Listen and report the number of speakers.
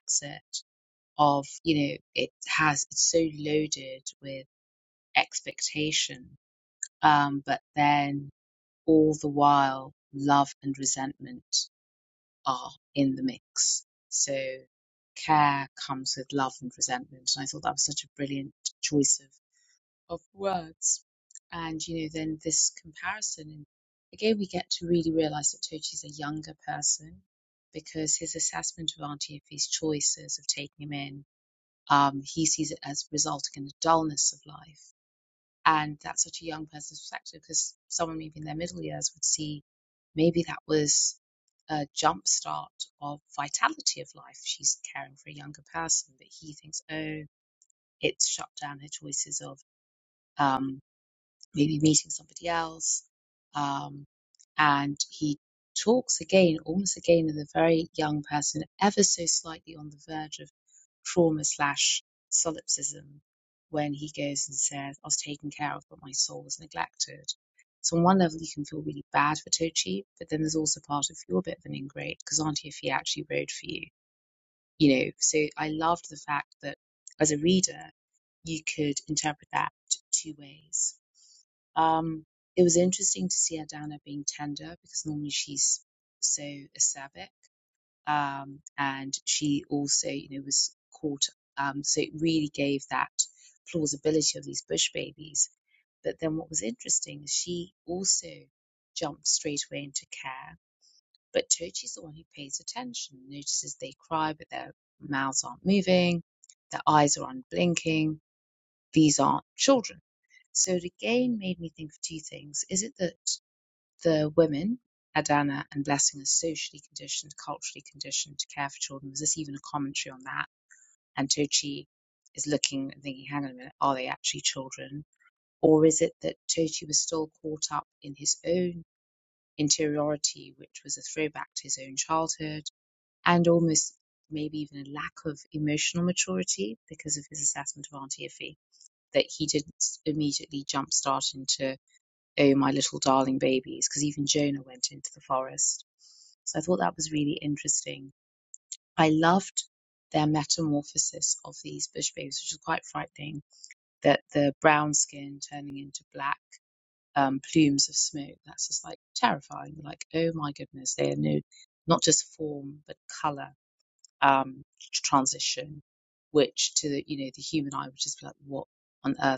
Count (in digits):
1